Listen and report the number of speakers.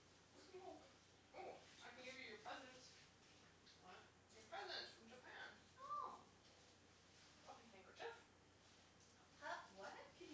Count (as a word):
two